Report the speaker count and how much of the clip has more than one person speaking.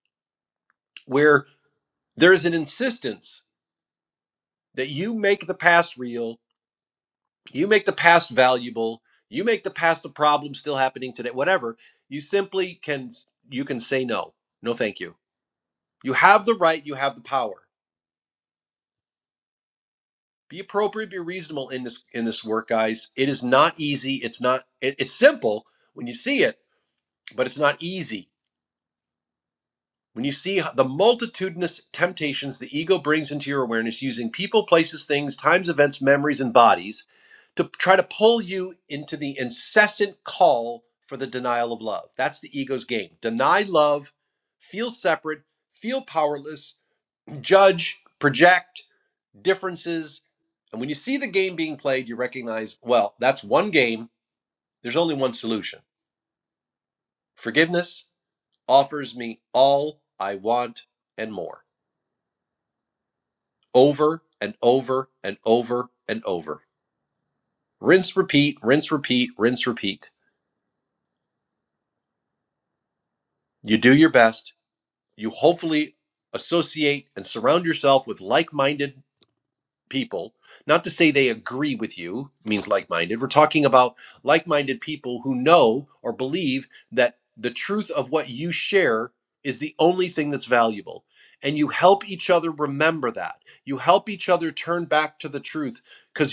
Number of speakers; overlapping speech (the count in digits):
1, no overlap